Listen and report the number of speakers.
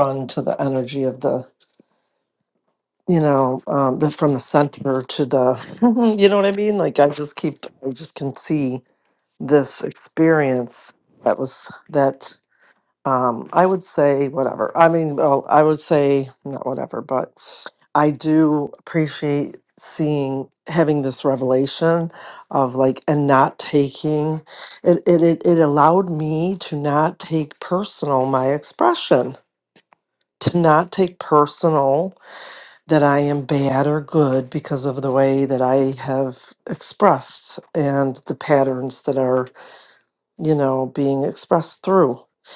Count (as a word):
one